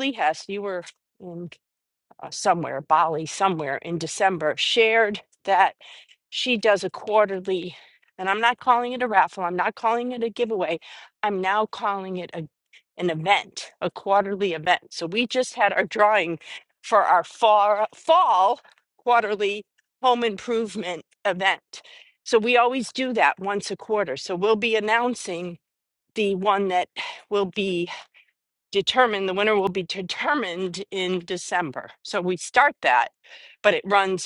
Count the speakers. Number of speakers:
1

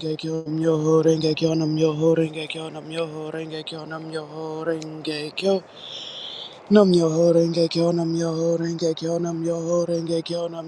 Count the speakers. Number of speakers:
1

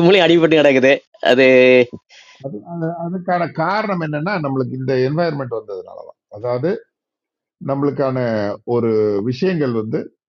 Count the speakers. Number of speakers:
2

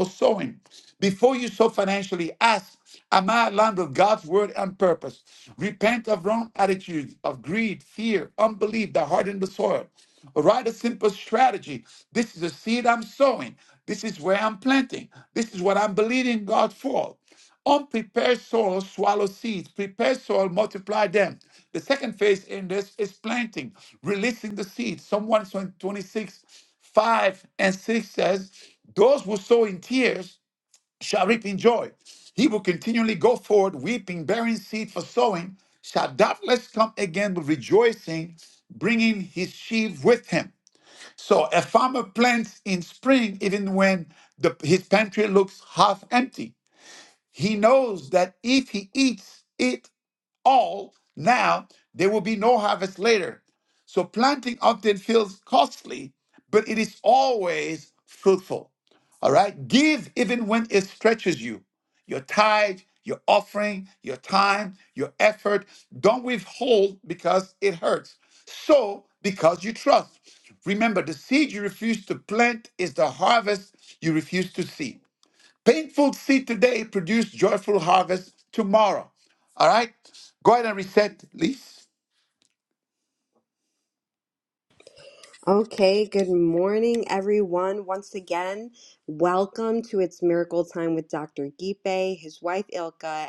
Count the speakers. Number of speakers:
2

